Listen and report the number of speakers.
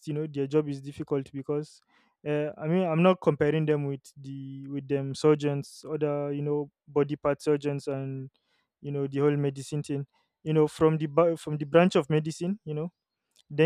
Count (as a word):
one